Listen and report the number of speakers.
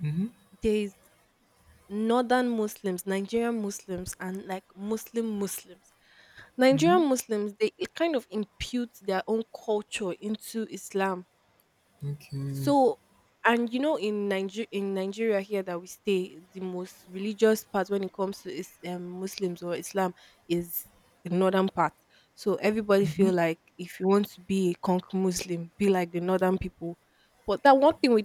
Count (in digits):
2